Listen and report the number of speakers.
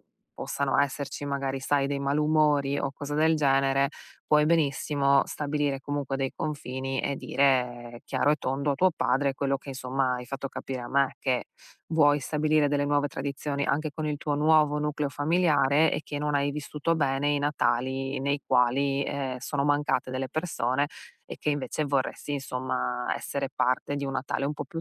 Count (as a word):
one